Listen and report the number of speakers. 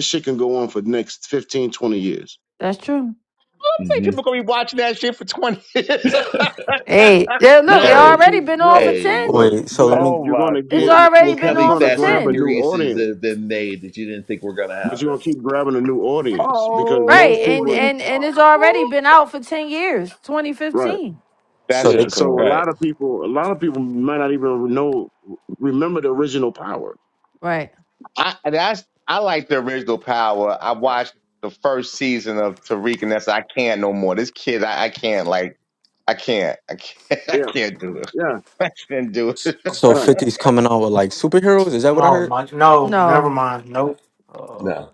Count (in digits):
6